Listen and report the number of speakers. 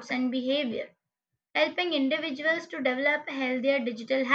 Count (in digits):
1